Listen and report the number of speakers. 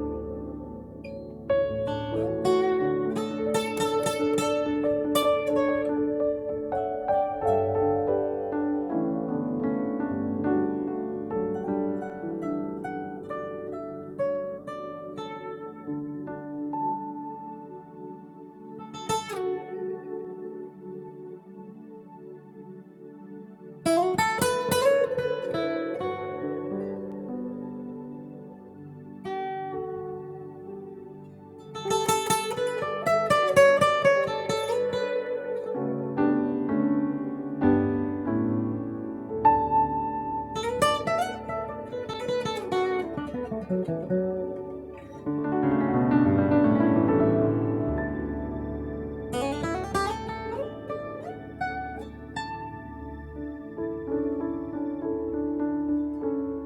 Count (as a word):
zero